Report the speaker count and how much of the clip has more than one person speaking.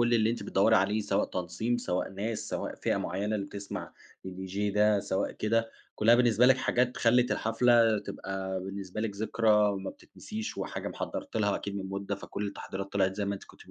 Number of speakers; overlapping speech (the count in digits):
1, no overlap